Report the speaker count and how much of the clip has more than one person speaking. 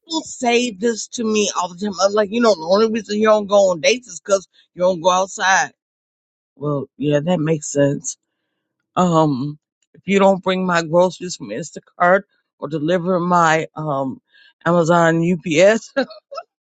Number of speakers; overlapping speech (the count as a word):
one, no overlap